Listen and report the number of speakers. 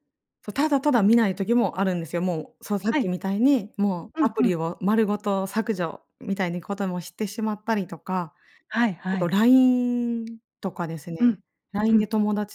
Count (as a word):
two